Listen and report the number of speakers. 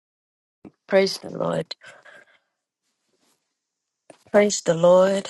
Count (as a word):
one